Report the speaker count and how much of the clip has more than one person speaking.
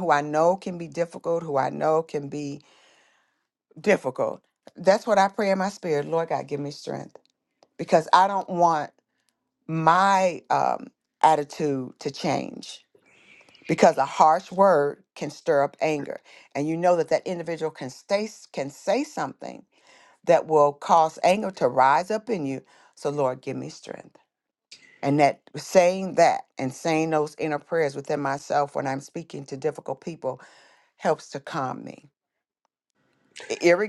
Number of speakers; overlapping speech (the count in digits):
1, no overlap